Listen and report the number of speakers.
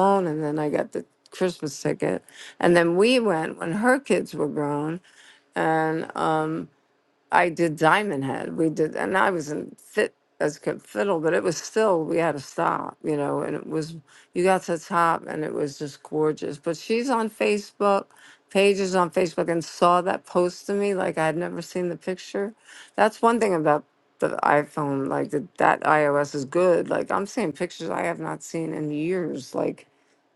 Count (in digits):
1